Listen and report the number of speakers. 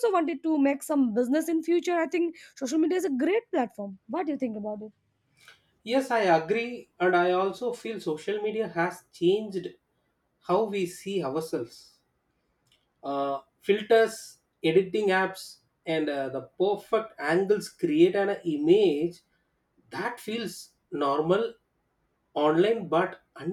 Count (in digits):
2